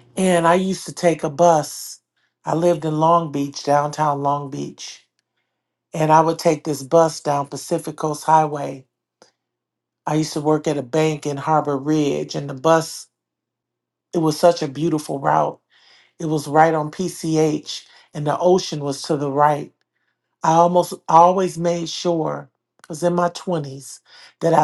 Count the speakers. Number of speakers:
1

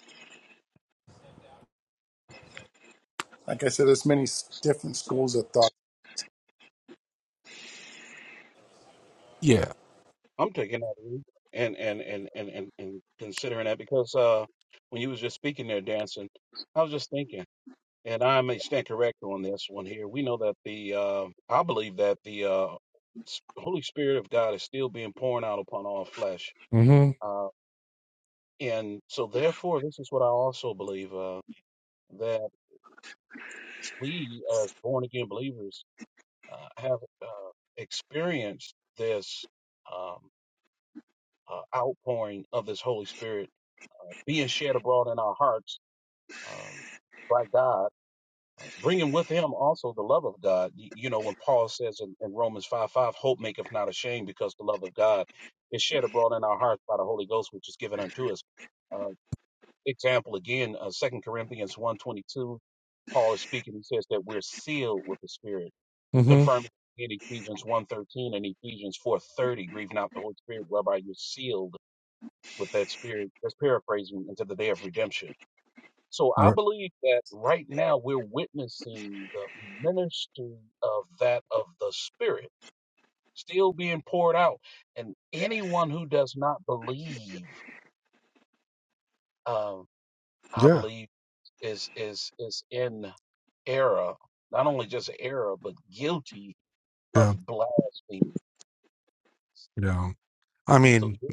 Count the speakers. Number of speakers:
3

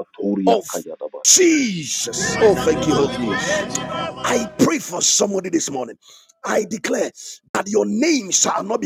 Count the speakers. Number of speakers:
2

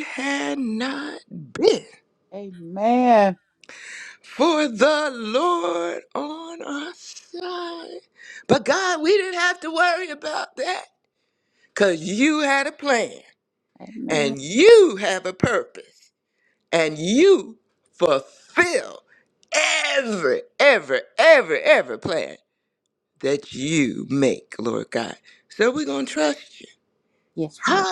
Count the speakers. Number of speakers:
2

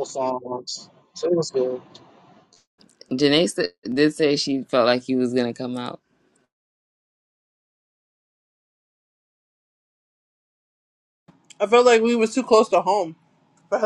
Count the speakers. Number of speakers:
3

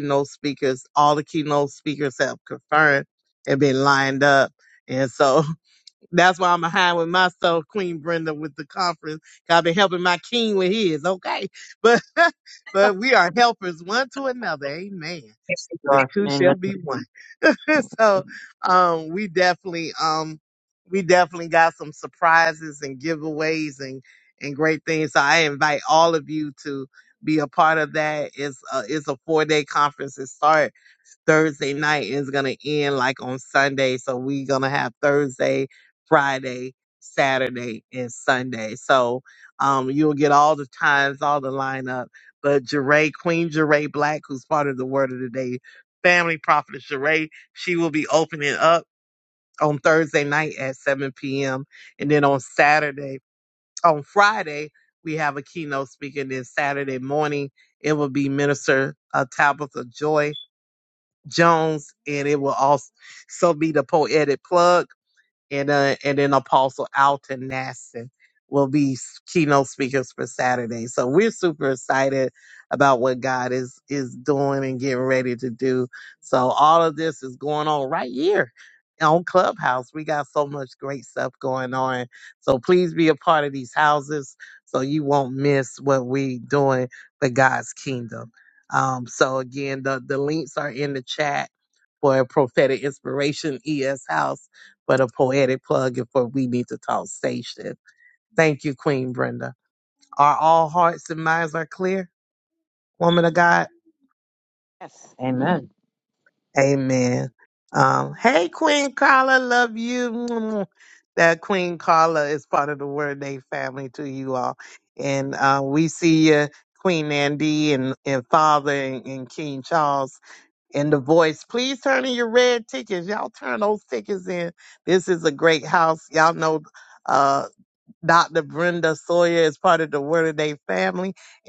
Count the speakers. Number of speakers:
2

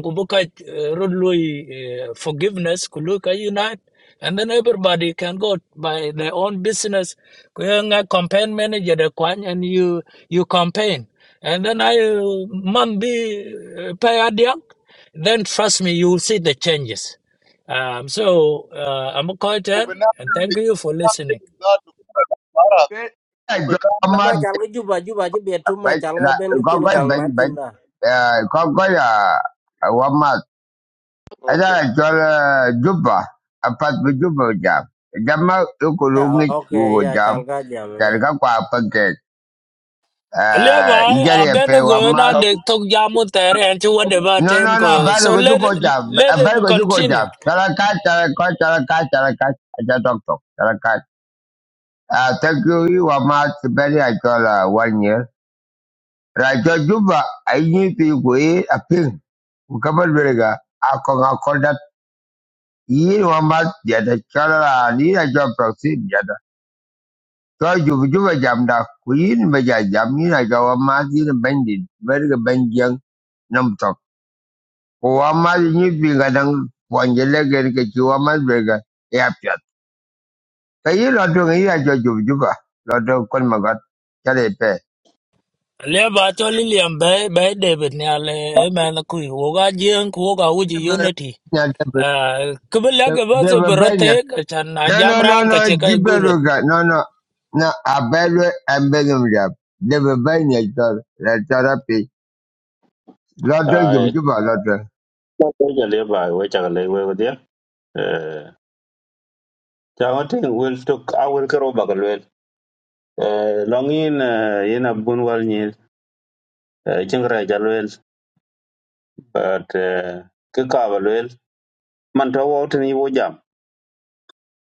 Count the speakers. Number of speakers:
5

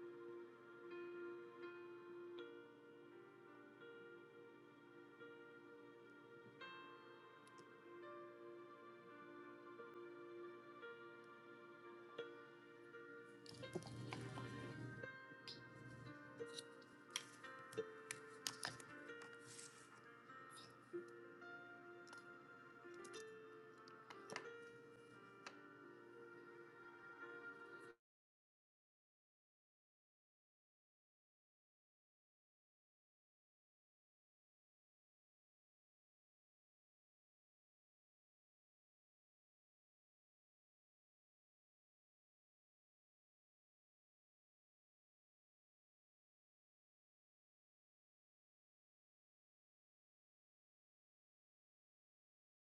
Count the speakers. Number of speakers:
0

